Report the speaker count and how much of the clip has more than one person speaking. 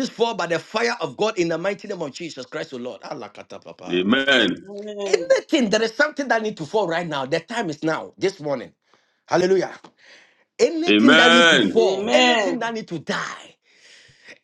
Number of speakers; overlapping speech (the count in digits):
3, about 16%